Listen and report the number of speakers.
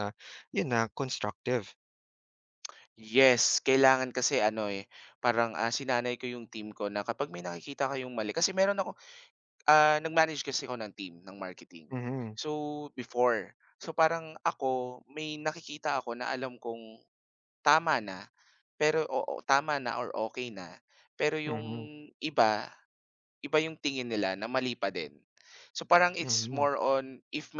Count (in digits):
2